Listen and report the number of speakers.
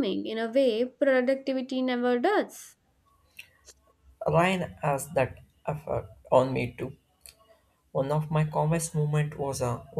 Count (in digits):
2